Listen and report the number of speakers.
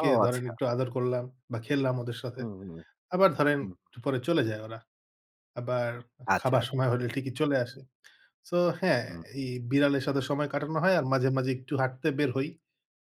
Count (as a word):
two